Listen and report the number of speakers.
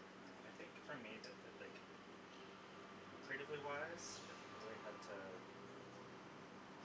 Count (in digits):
1